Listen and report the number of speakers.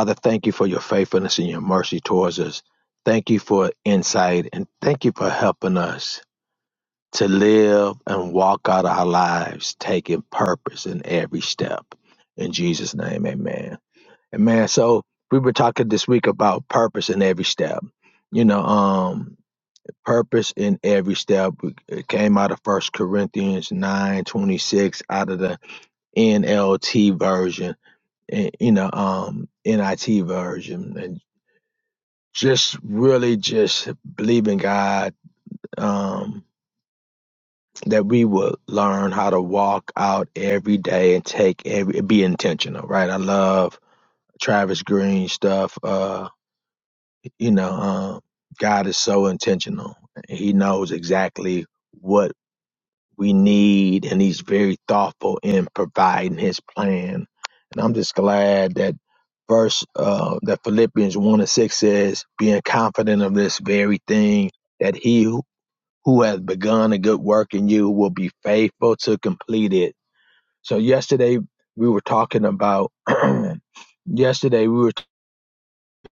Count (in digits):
1